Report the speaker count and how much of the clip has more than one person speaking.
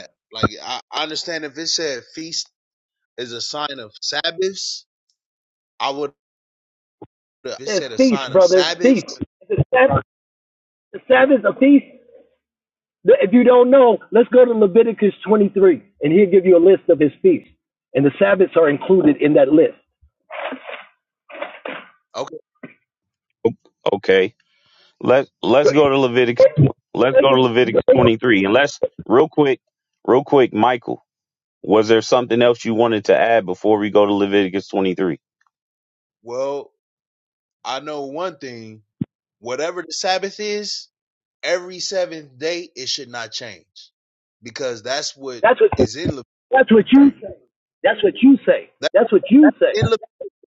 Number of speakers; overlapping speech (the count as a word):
three, about 6%